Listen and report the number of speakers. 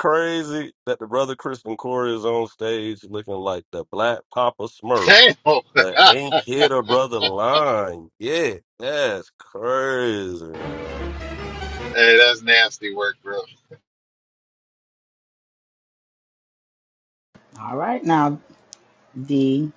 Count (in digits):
3